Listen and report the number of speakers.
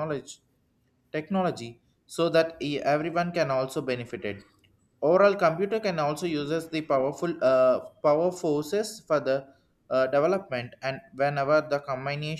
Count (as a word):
one